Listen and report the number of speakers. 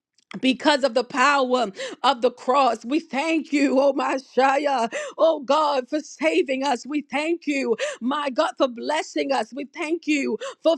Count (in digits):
1